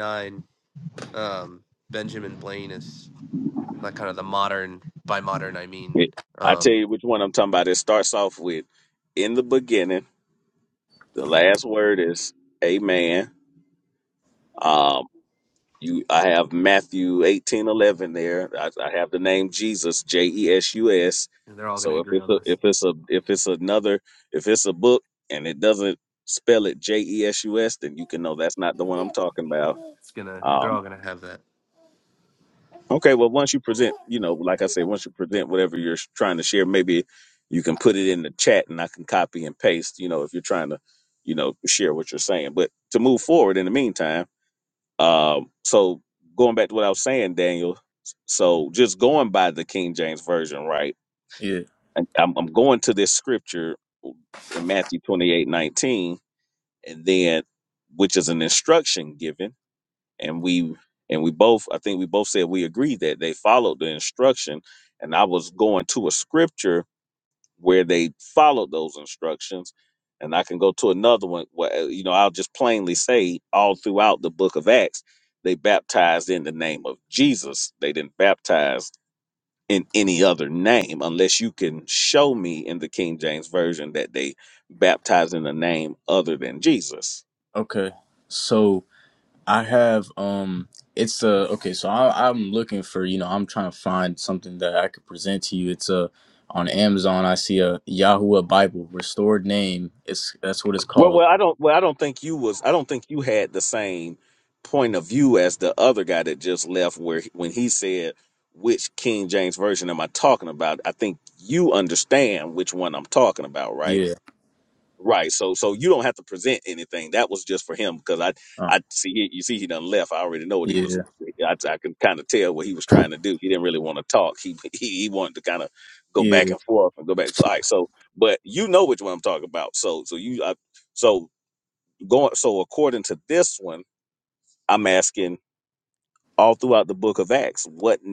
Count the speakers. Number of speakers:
3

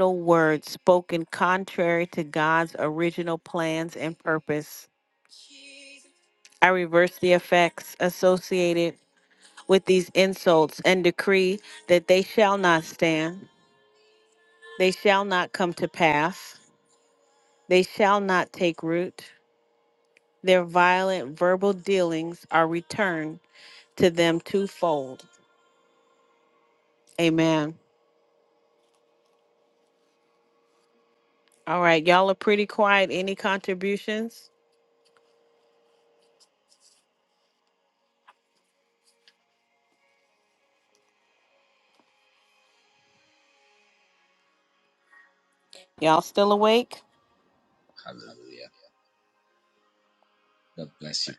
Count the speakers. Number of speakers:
2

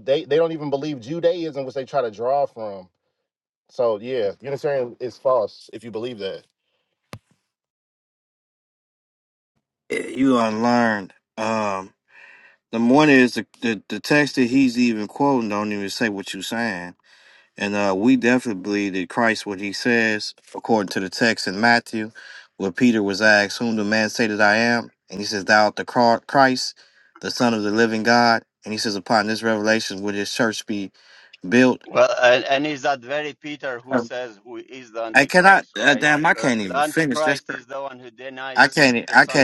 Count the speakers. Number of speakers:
3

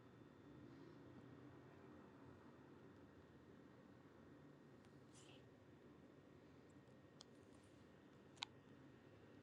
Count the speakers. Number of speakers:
0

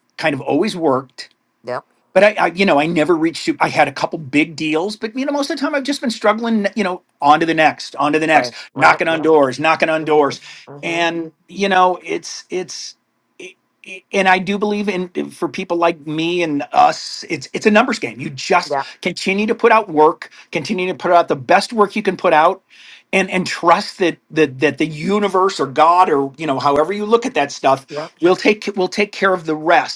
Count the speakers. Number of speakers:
2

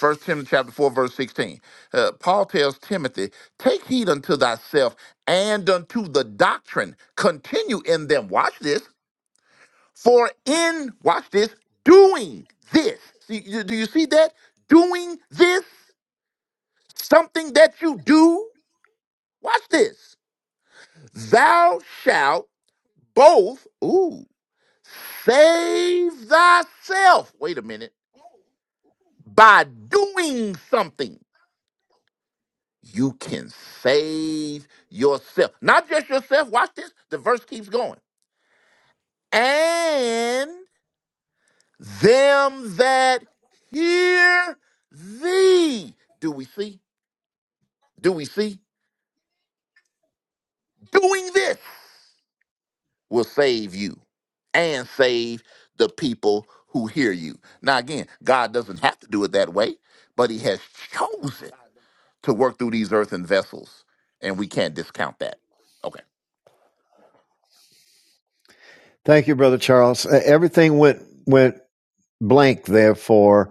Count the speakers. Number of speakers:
2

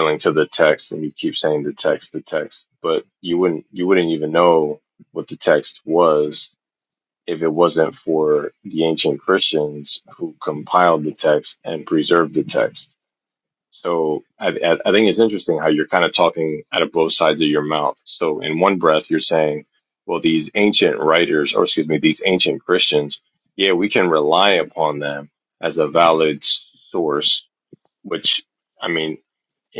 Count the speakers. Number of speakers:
1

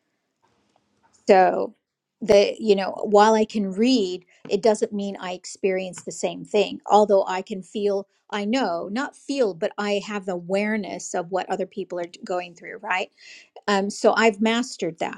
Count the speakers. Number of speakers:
1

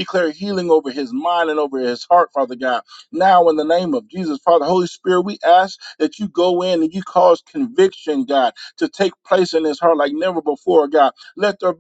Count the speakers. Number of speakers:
1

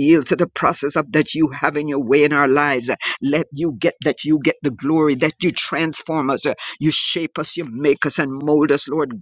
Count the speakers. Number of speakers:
1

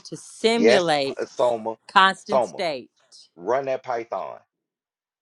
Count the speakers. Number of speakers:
2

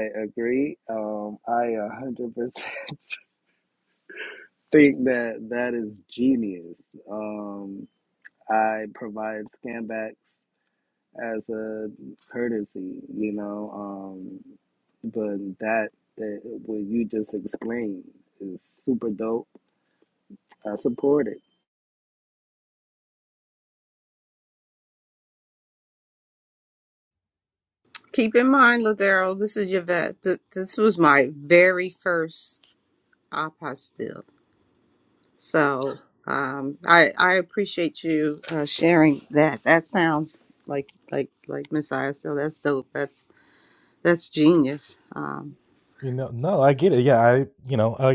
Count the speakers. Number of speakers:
3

